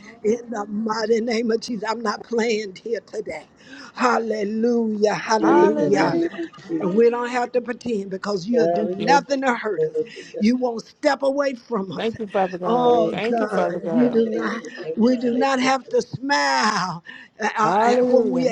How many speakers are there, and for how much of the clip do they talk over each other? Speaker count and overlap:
3, about 34%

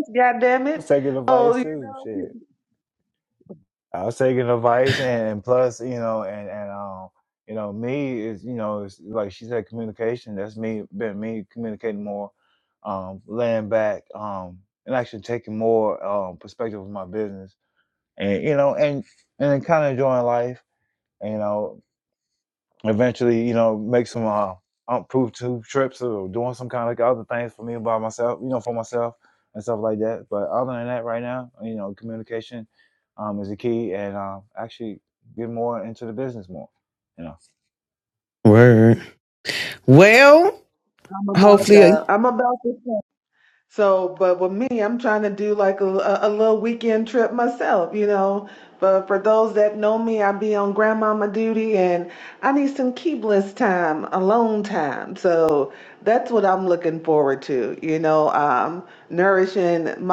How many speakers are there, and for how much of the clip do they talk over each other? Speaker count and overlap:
3, about 3%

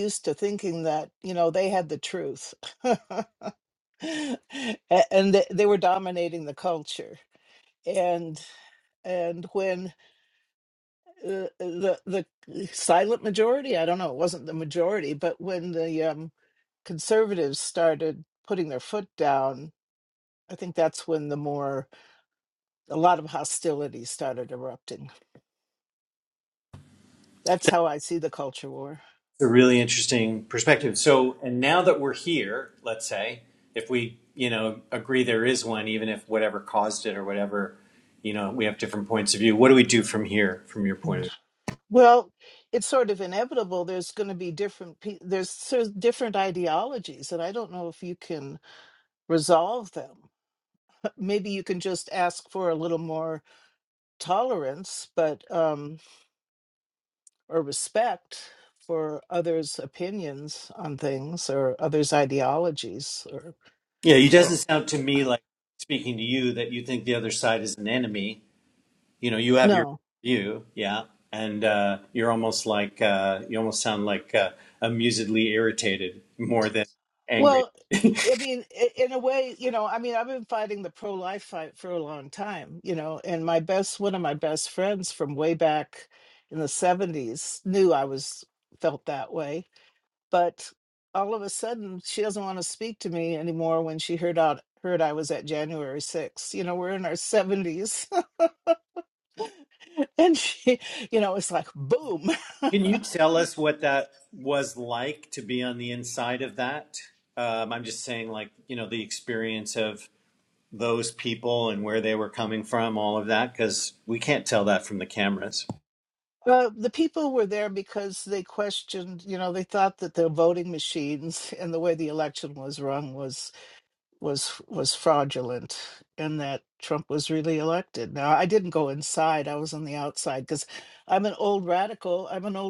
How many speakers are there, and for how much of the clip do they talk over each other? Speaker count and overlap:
2, about 1%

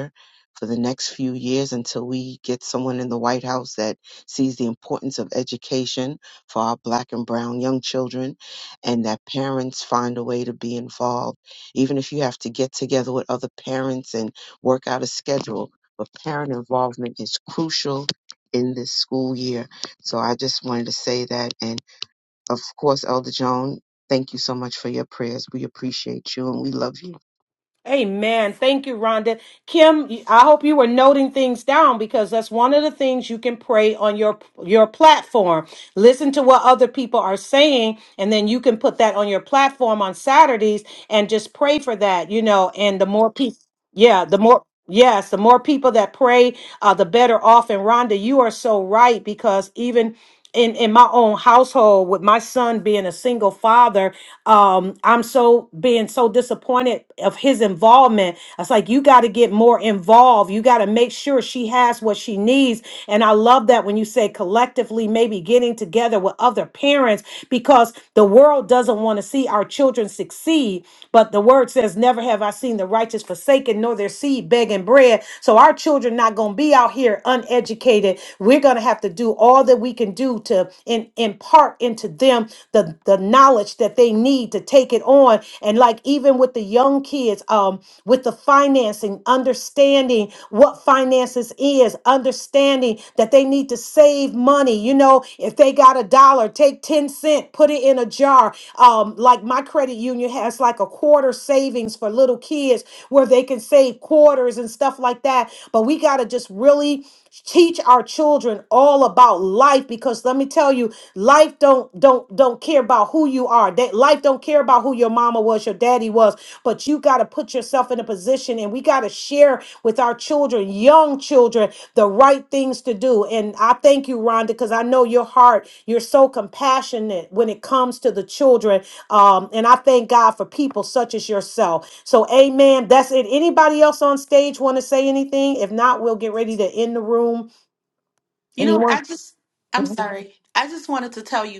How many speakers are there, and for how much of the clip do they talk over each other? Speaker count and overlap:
3, under 1%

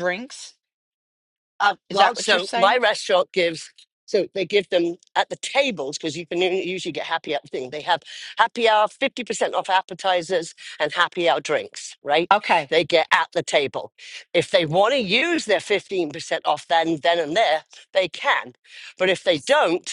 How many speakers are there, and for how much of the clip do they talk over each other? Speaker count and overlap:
2, about 4%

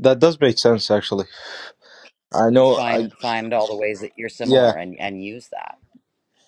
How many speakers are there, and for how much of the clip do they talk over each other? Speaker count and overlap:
2, about 12%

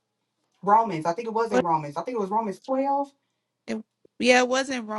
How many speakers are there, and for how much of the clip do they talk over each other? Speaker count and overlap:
2, about 2%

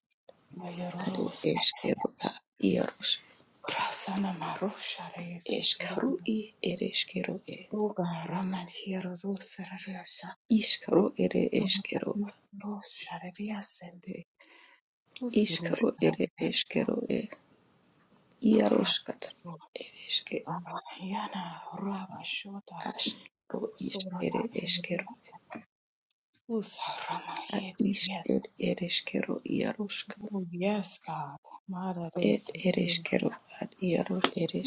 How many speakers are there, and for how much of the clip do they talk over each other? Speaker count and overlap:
2, about 15%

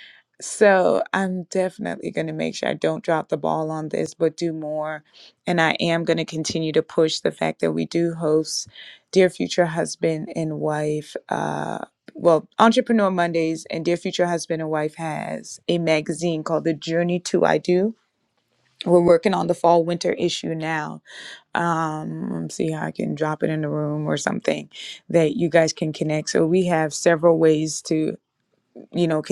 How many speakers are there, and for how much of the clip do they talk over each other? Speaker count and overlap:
1, no overlap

